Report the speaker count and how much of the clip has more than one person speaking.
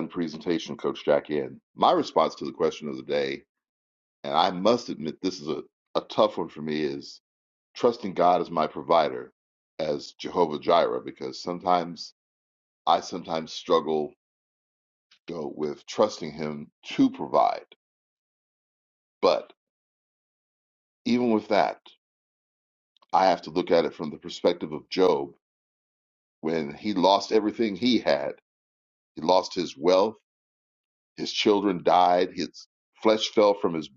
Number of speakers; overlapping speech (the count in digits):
1, no overlap